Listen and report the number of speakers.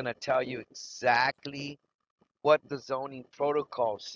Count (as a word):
one